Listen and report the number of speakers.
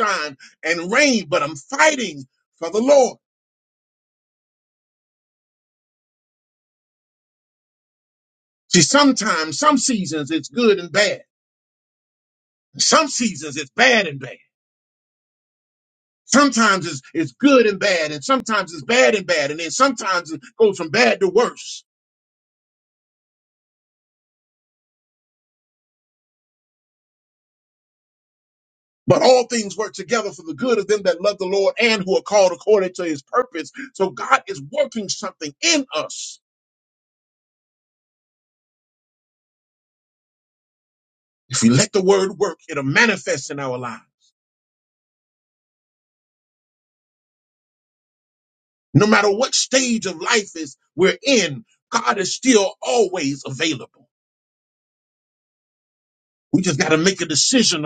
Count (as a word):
one